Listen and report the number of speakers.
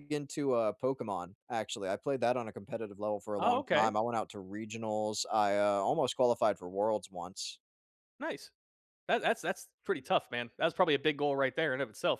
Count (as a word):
two